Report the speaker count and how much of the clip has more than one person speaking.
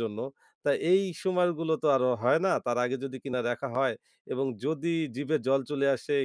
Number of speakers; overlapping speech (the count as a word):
one, no overlap